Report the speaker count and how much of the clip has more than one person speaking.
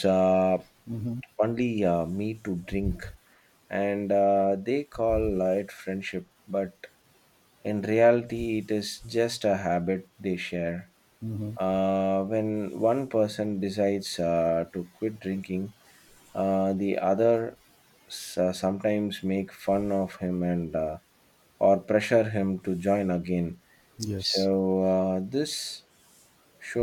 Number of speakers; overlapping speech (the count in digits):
2, about 1%